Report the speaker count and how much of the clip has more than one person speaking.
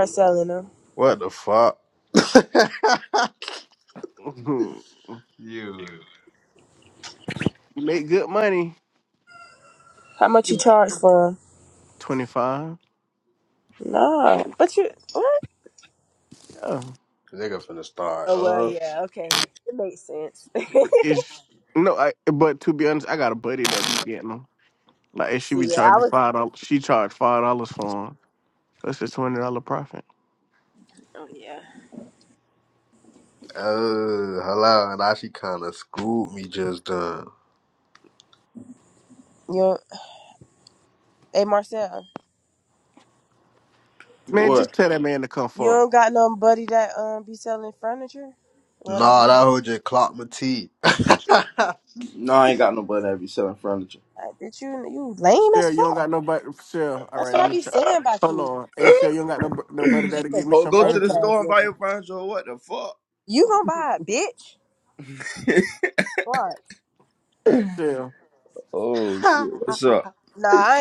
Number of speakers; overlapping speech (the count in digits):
4, about 8%